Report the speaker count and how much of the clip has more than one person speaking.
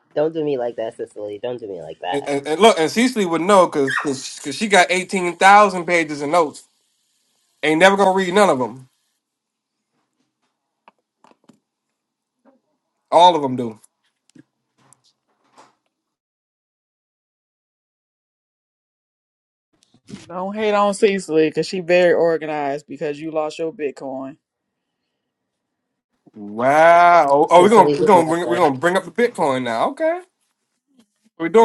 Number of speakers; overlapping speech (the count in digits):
3, about 4%